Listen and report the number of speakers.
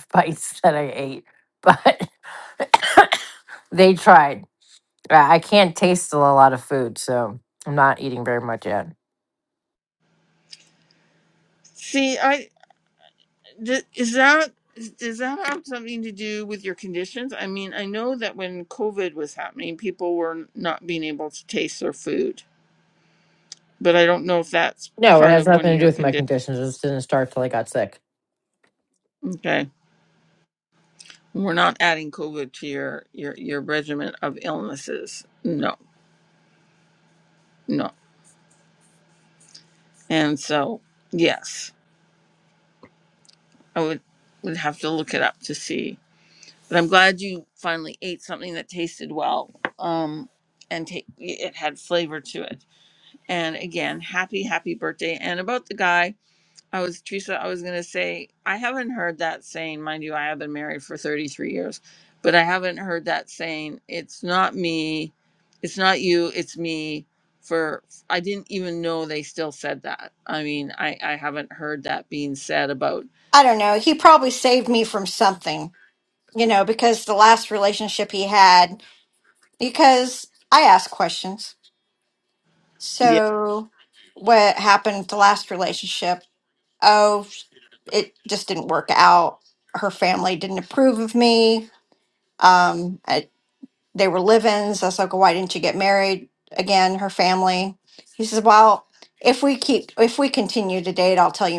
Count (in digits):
3